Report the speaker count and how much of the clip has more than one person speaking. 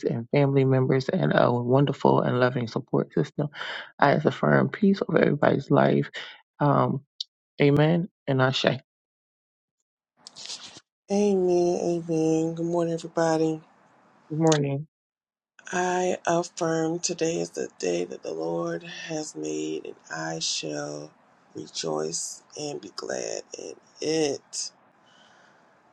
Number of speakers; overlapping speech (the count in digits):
2, no overlap